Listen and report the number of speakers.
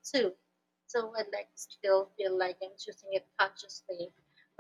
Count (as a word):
one